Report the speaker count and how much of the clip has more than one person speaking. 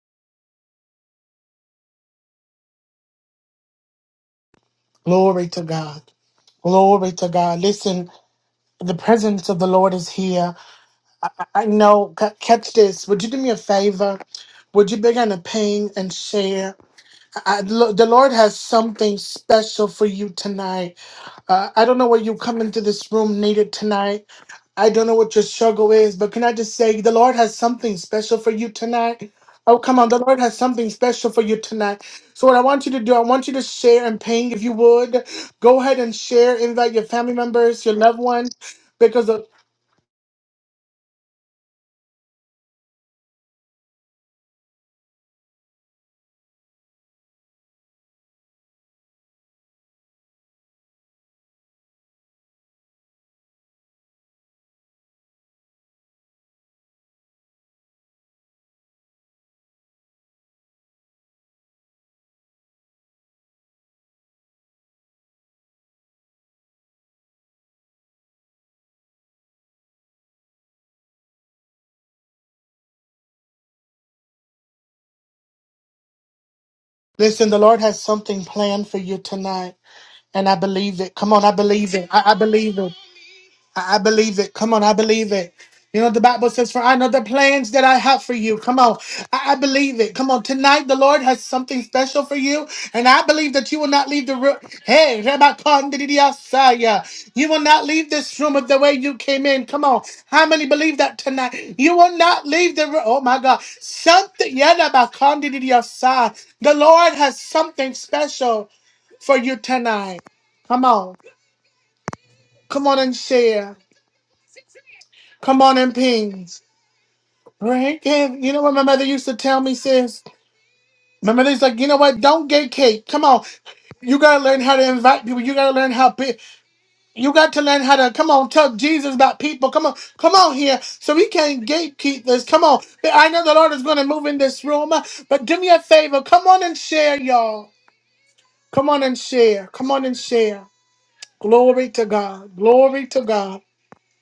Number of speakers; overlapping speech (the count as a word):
one, no overlap